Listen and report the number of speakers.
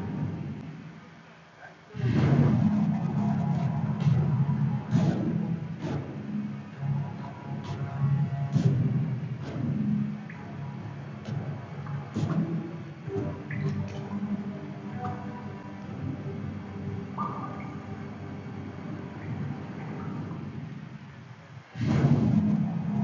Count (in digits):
0